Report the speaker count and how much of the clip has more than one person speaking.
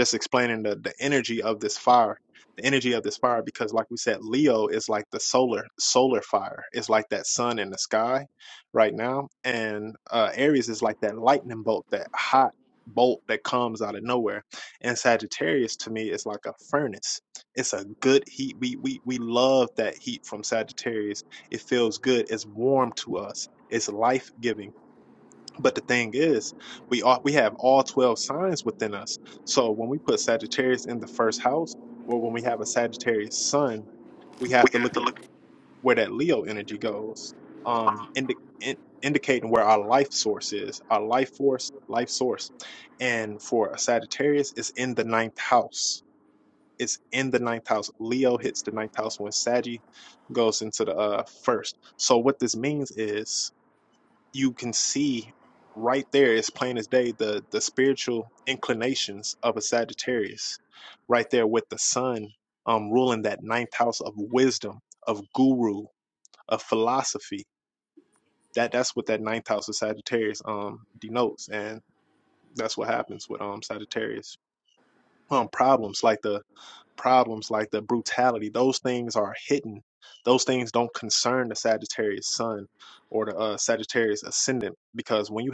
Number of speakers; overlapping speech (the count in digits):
1, no overlap